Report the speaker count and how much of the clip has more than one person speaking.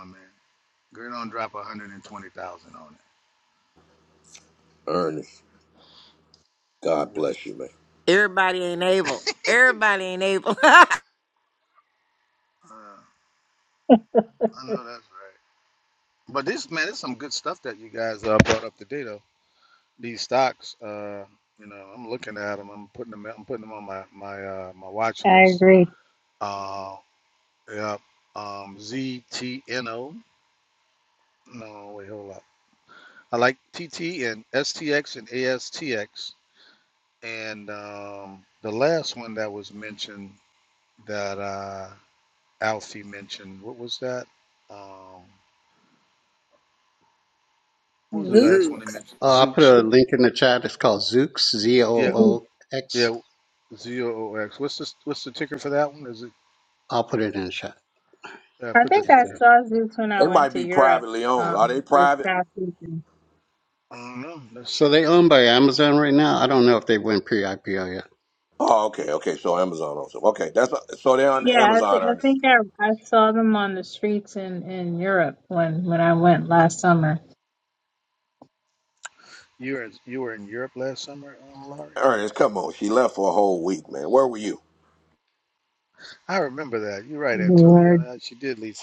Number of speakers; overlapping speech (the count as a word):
five, about 6%